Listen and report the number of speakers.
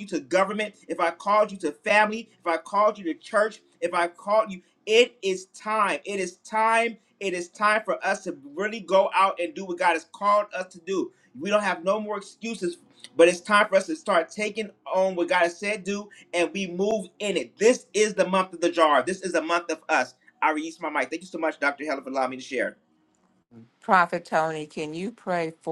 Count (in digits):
2